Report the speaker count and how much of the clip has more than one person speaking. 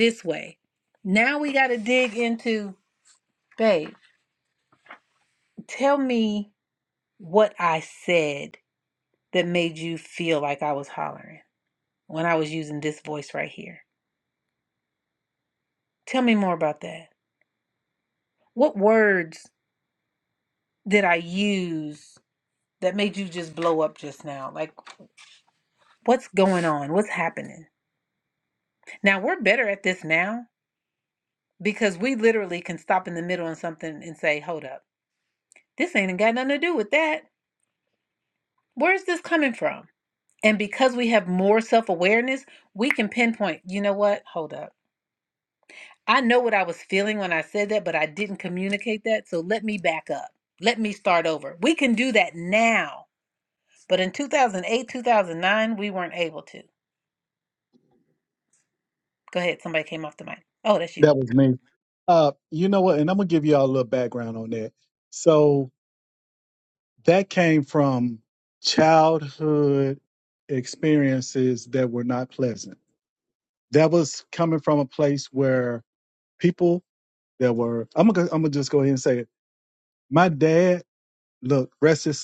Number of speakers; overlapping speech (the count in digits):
2, under 1%